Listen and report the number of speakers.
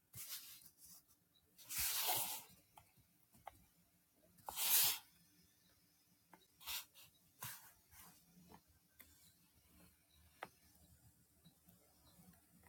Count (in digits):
0